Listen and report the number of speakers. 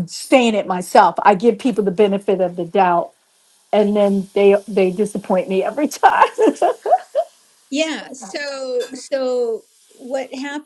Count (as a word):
two